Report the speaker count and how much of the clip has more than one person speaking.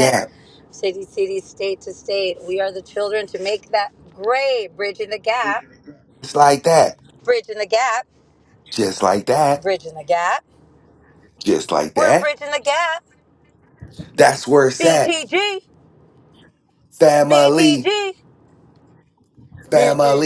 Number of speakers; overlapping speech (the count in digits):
2, about 9%